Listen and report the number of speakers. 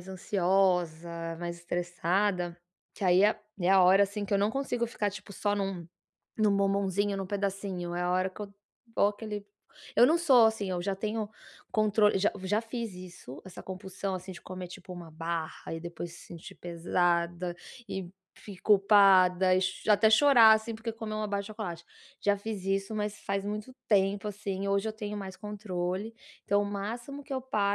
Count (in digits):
1